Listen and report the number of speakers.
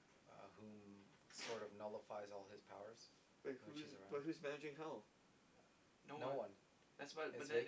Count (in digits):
3